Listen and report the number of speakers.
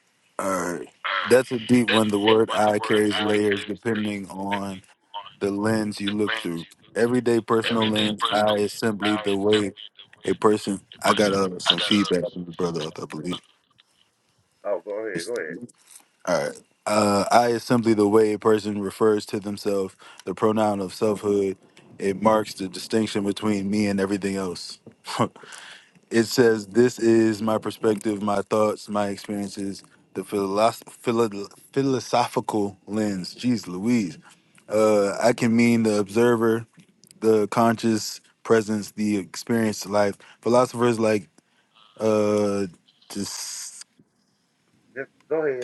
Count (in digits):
2